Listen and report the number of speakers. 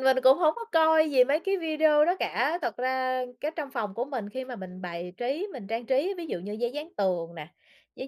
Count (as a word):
one